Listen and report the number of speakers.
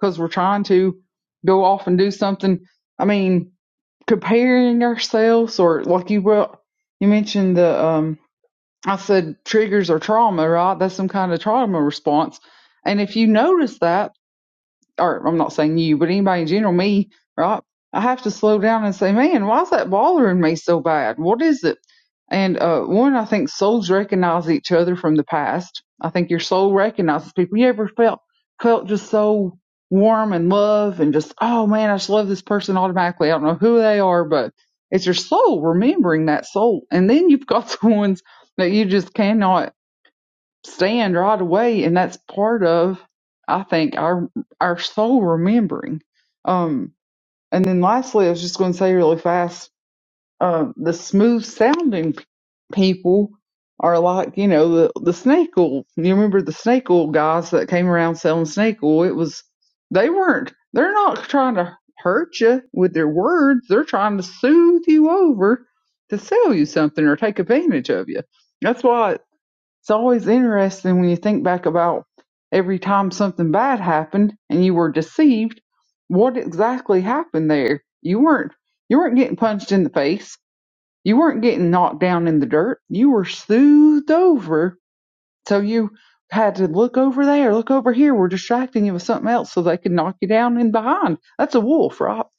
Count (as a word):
one